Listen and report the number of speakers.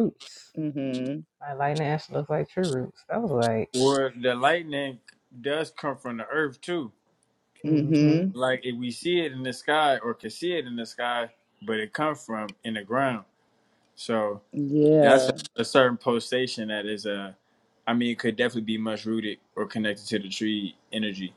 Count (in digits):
3